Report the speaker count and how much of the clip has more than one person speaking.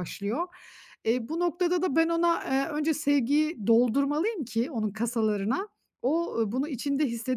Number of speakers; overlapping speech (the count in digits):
1, no overlap